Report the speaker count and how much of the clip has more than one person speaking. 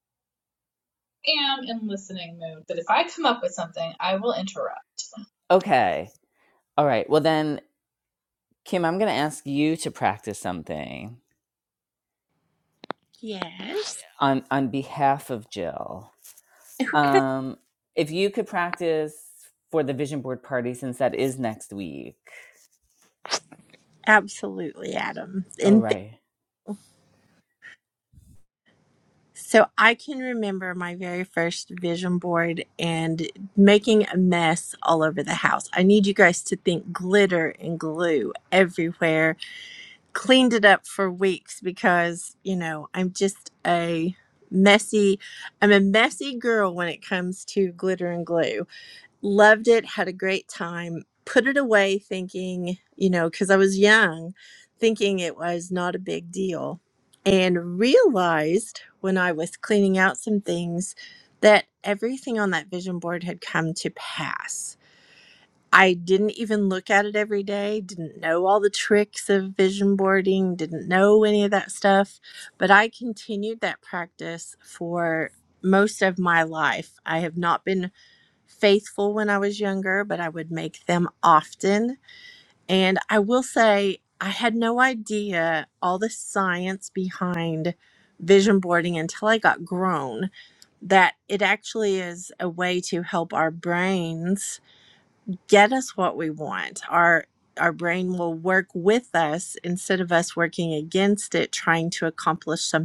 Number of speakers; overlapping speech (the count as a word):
three, under 1%